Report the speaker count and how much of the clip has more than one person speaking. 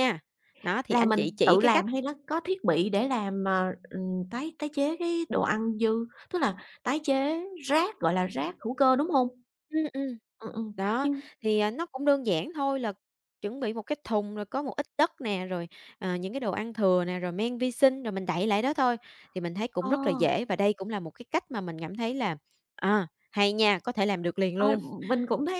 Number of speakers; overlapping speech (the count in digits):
2, about 6%